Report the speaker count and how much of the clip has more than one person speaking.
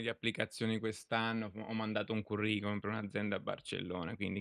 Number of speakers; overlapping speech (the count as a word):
one, no overlap